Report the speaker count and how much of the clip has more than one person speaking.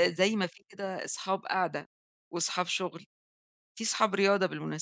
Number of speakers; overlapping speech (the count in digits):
1, no overlap